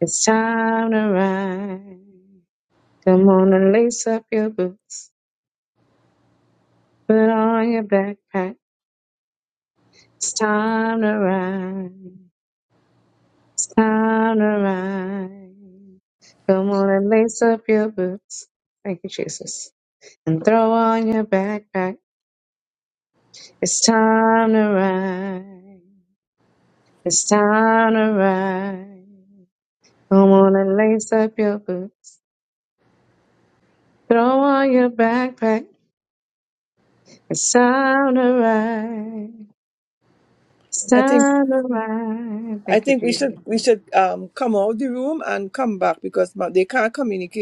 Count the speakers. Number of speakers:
2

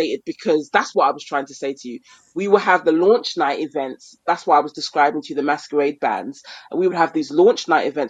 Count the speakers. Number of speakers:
1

